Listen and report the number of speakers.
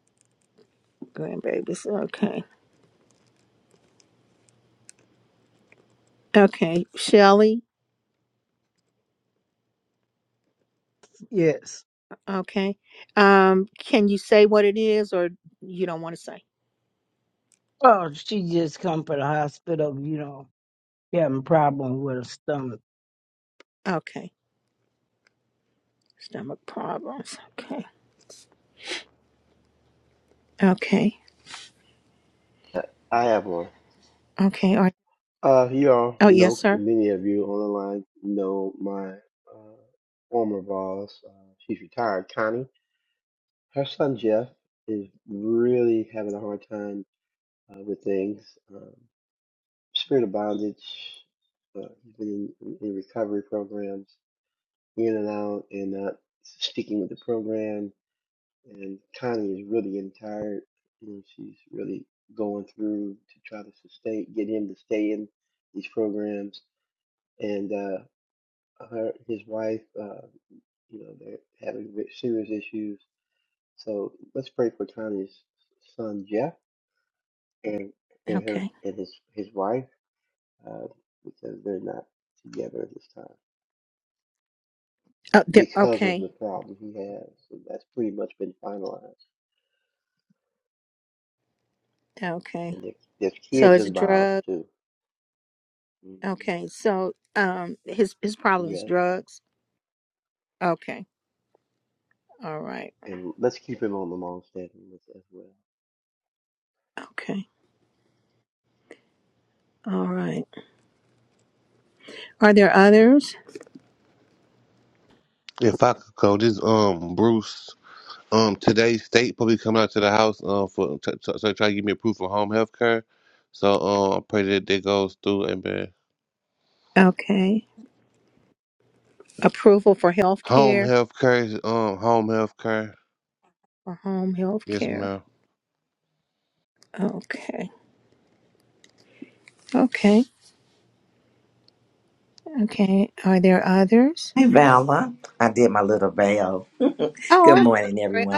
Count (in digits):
5